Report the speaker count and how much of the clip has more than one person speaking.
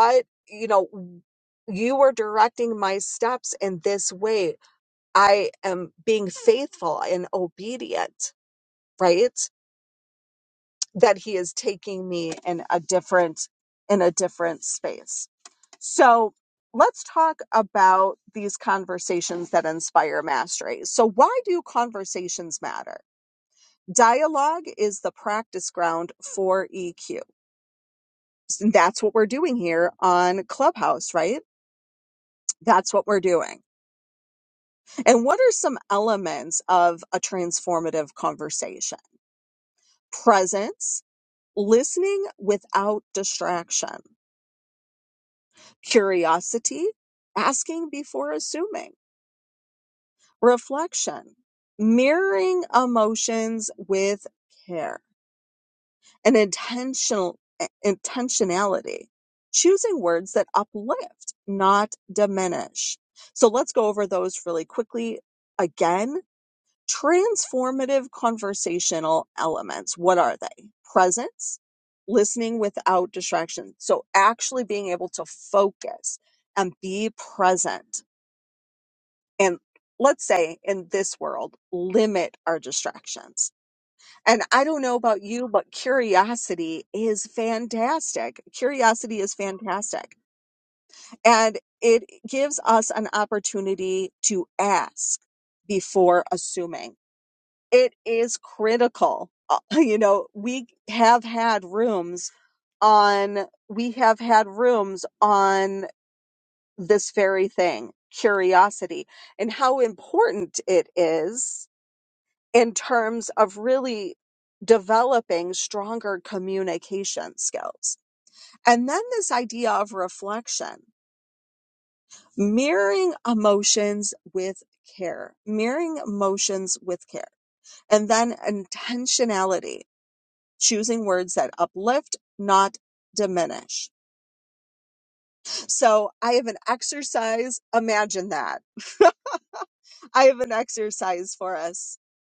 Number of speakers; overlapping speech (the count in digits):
1, no overlap